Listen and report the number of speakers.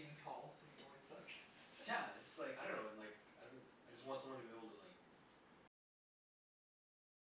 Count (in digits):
2